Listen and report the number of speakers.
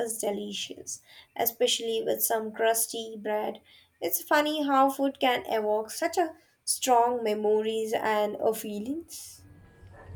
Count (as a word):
one